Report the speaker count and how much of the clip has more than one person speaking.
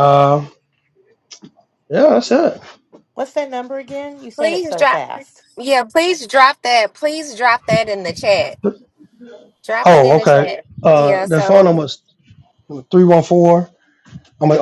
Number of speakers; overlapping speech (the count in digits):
3, about 14%